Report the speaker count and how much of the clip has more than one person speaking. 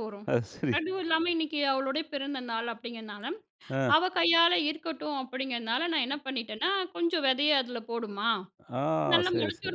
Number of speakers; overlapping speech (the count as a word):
two, about 5%